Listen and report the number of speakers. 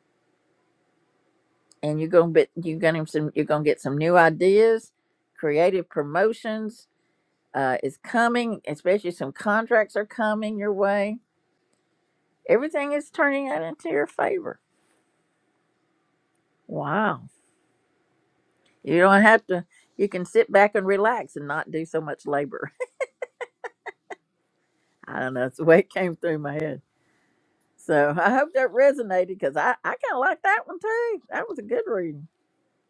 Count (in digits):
1